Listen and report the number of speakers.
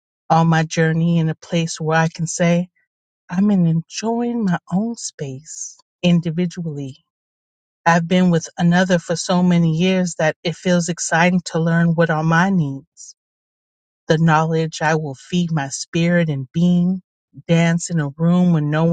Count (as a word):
one